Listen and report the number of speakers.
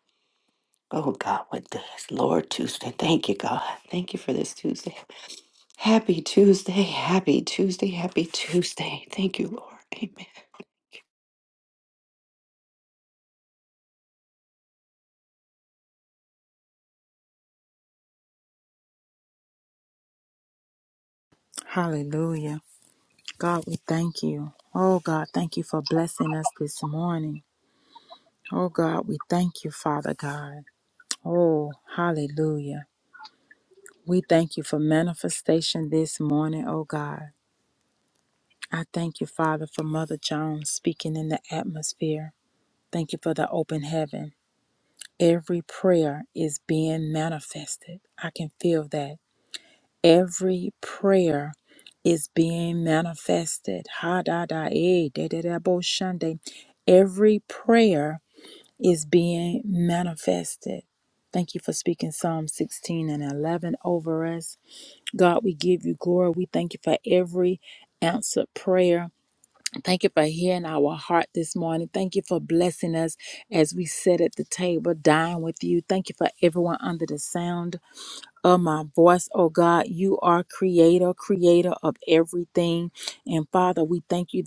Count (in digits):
2